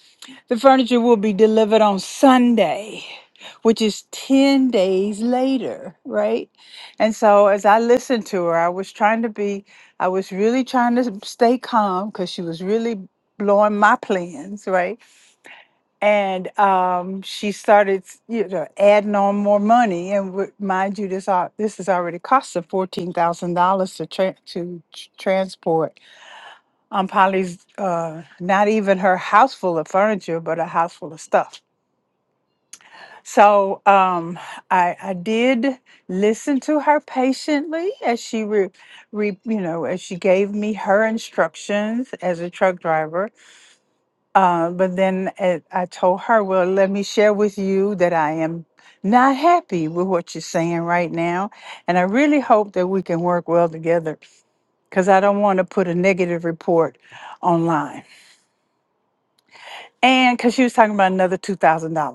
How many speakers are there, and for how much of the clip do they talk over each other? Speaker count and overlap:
1, no overlap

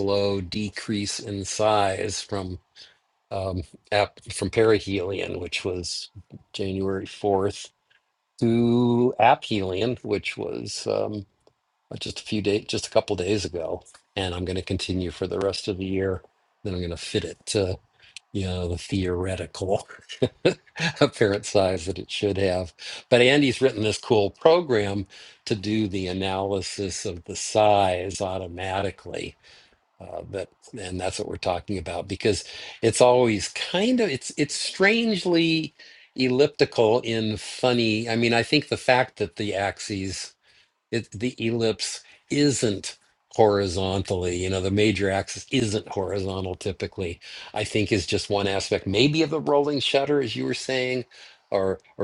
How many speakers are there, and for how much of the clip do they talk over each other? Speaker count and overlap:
1, no overlap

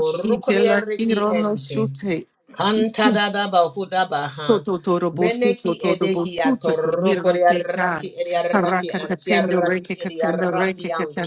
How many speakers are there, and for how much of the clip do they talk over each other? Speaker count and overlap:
2, about 66%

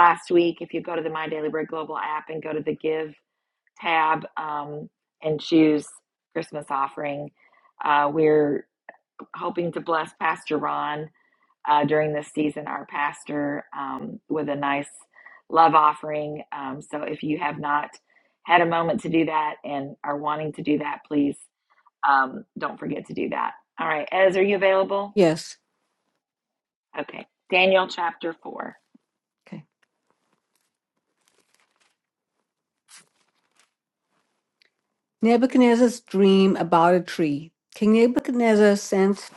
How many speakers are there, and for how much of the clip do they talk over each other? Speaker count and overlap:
2, no overlap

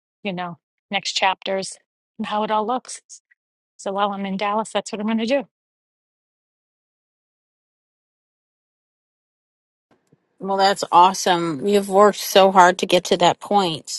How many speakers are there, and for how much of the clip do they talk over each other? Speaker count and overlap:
2, no overlap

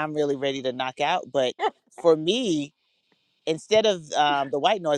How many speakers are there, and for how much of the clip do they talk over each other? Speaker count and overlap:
1, no overlap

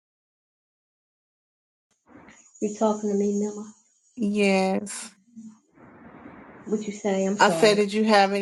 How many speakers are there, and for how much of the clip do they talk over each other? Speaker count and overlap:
2, about 5%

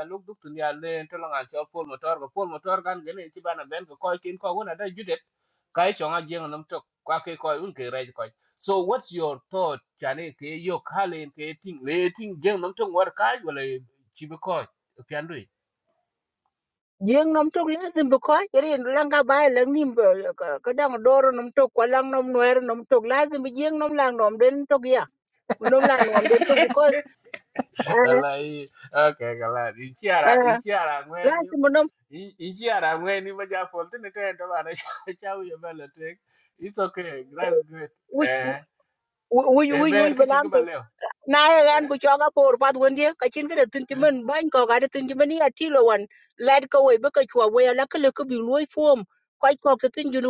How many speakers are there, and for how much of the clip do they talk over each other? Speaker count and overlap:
2, about 4%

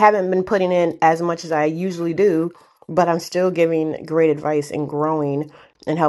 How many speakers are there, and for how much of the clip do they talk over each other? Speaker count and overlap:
1, no overlap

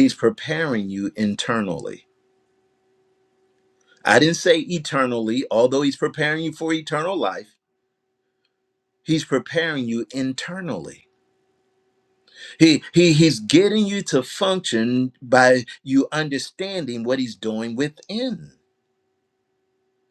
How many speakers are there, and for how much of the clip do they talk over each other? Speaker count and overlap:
1, no overlap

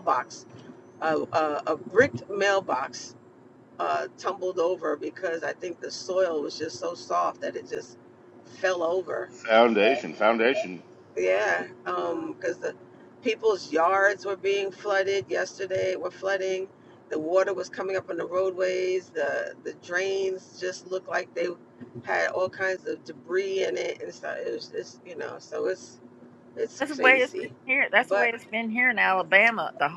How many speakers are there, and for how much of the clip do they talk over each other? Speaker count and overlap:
3, about 3%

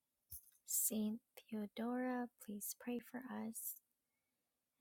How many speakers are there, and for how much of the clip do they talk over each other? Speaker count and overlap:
1, no overlap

